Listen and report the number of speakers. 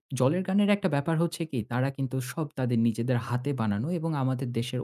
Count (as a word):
one